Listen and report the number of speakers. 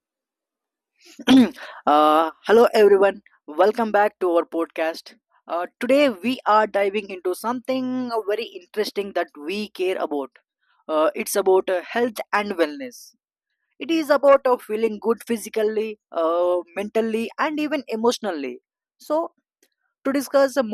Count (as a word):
one